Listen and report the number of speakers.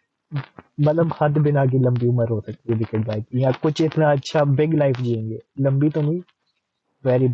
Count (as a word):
one